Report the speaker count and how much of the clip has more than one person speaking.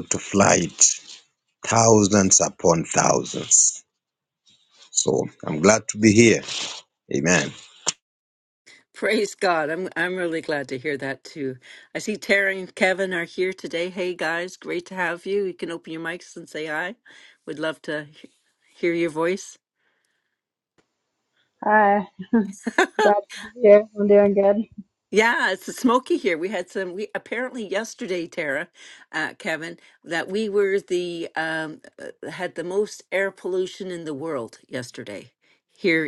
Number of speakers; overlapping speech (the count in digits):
3, no overlap